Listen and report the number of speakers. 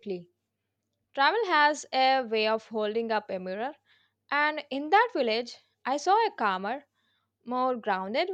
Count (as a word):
one